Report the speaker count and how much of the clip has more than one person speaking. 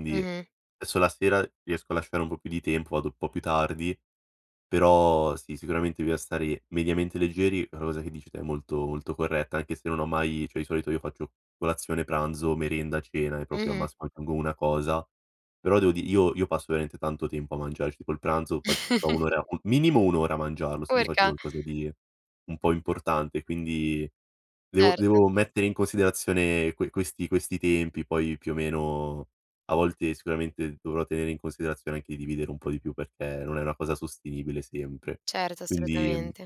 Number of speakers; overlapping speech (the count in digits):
2, about 6%